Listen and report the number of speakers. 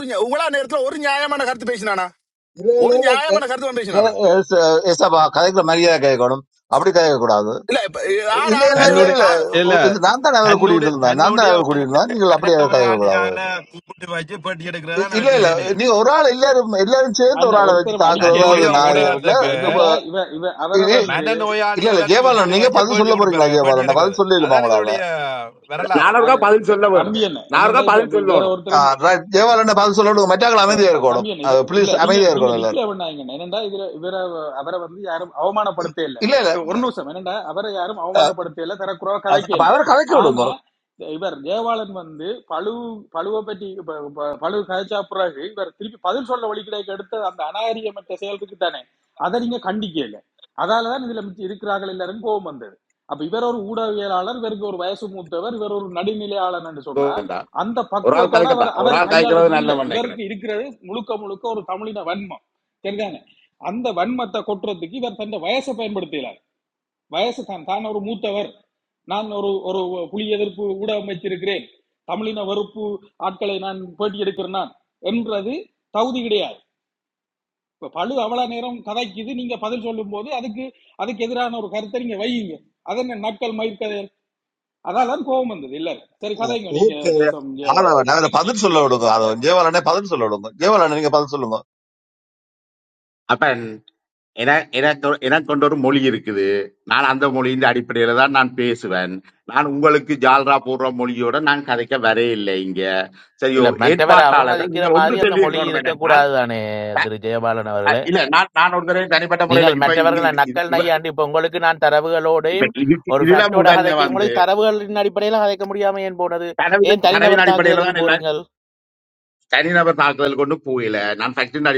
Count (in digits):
6